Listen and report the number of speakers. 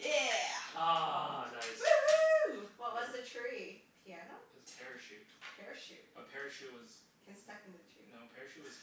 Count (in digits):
4